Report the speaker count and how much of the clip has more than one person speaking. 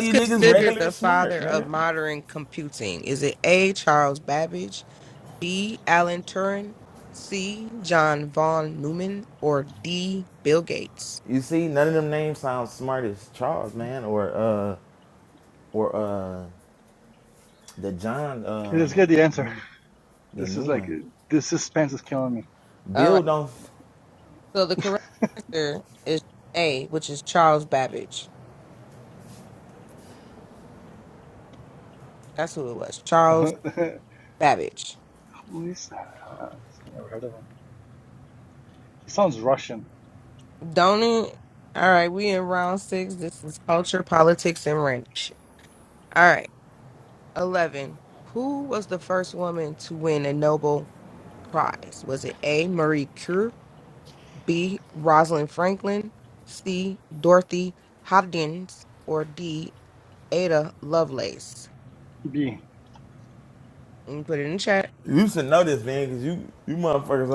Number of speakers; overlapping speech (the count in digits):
3, about 4%